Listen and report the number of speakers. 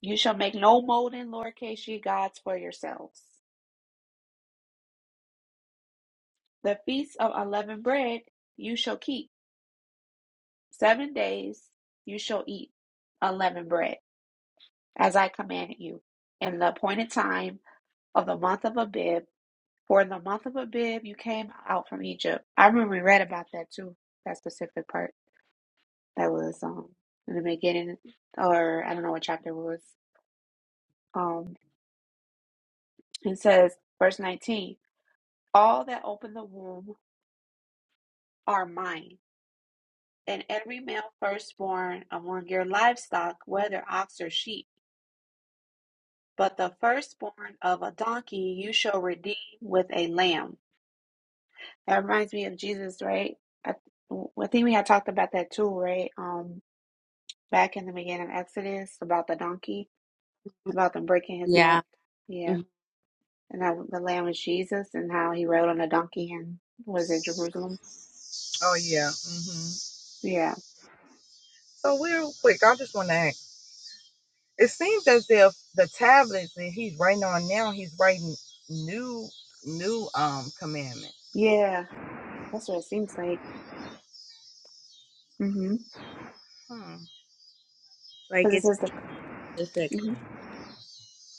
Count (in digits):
3